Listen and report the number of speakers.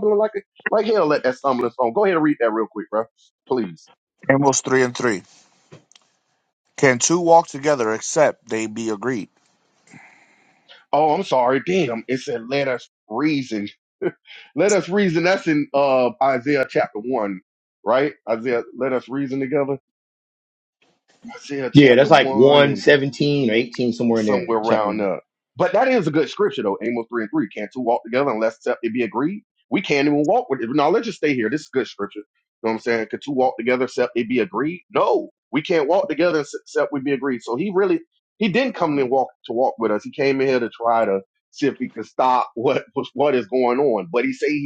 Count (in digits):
3